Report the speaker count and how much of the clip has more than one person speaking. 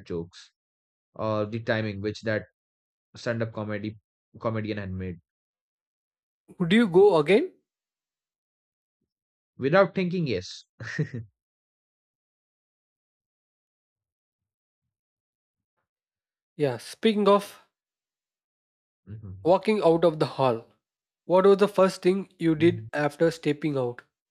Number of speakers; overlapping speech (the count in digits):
2, no overlap